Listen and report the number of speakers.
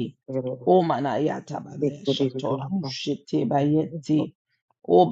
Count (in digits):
2